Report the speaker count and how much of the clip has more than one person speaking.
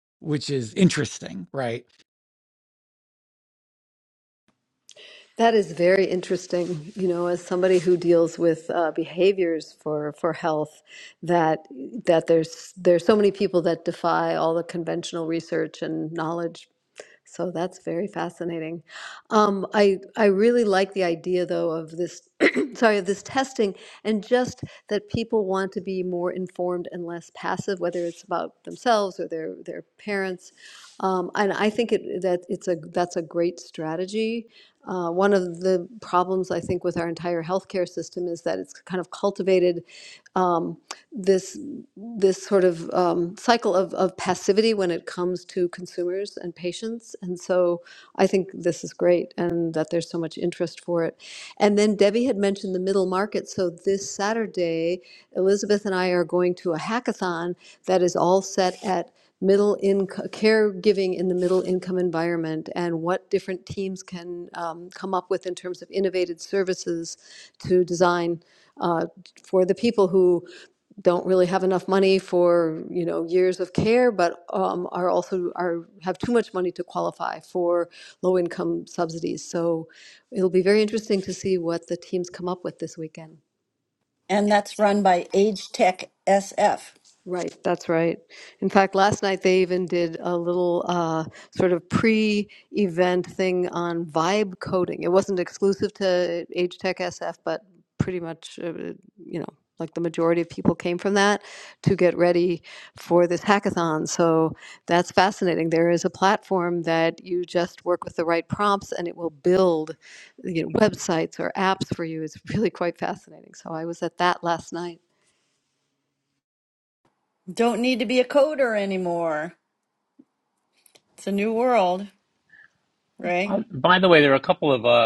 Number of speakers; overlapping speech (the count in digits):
4, under 1%